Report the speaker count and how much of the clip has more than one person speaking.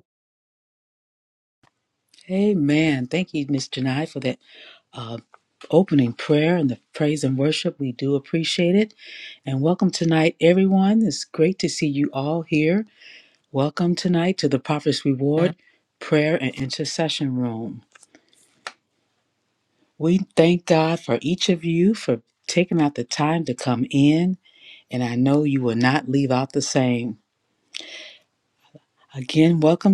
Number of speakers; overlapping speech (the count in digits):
1, no overlap